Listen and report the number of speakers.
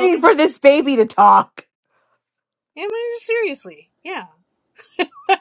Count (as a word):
two